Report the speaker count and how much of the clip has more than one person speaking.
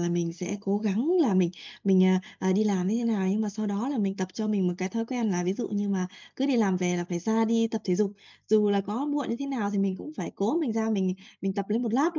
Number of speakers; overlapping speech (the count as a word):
one, no overlap